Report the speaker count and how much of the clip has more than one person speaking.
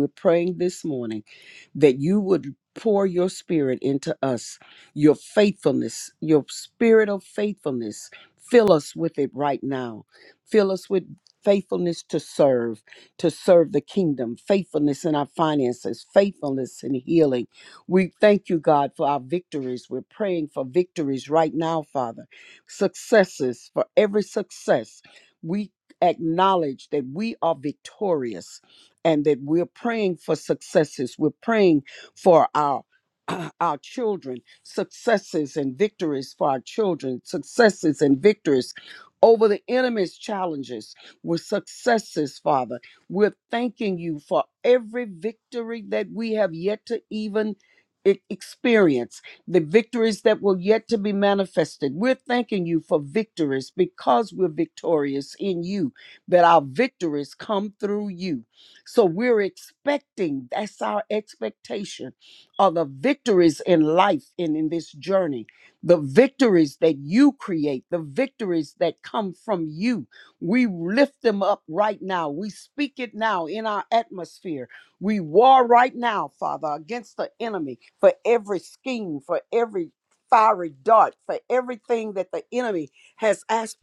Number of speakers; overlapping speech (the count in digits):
1, no overlap